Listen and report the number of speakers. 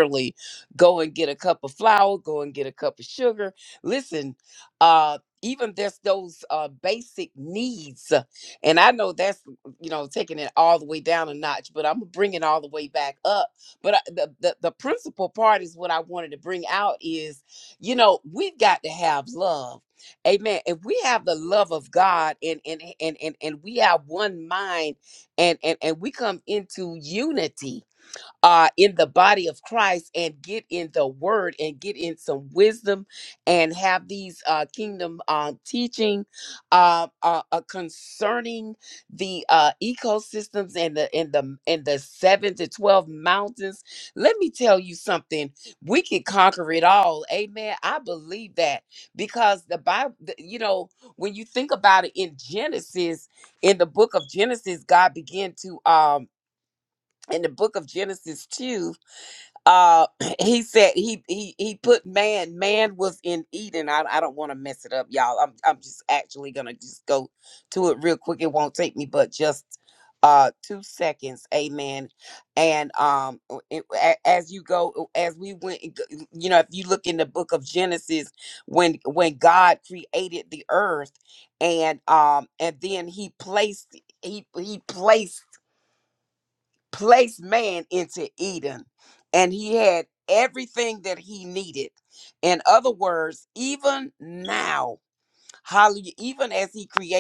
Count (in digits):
1